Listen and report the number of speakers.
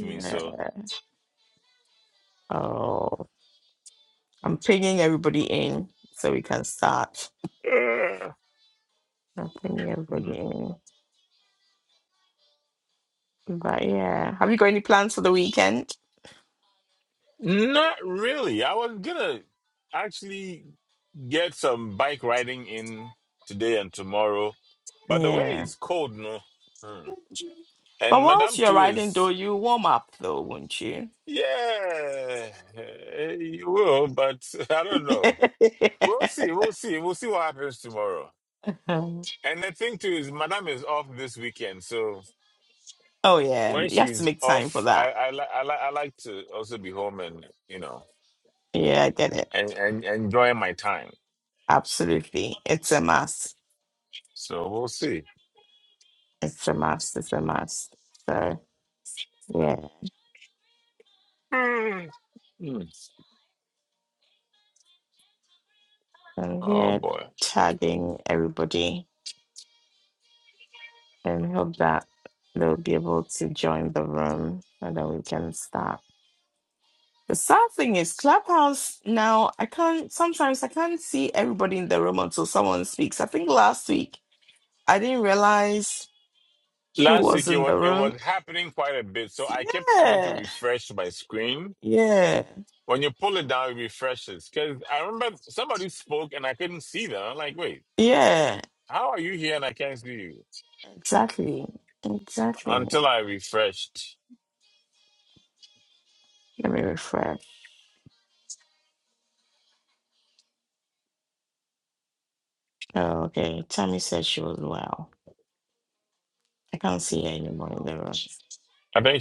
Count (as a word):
two